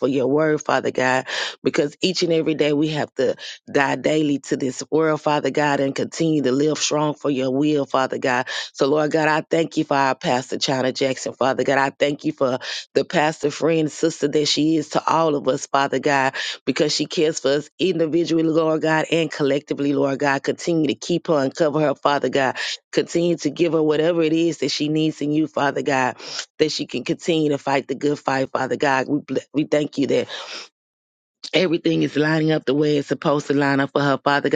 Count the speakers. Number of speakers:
1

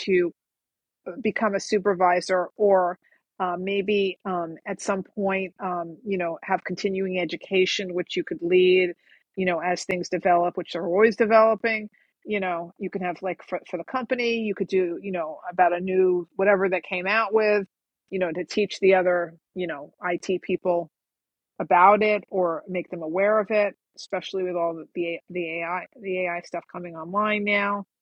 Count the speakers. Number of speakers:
1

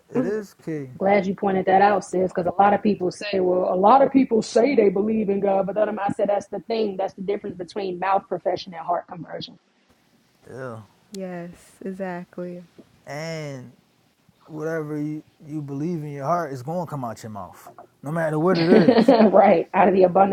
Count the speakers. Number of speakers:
3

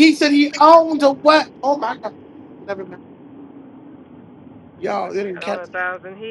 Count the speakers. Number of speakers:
2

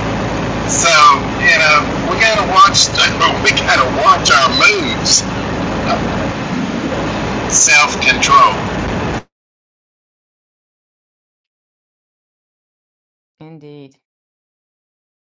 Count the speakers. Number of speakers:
2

